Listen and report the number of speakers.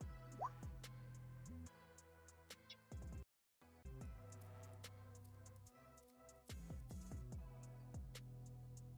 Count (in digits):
0